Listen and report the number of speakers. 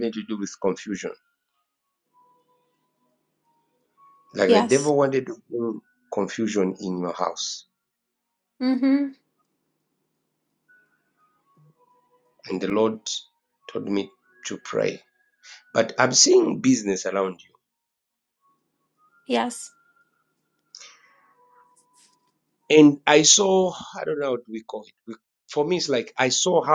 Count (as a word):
two